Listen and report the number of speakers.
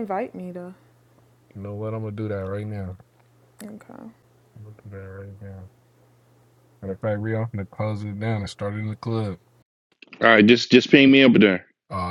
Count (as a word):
three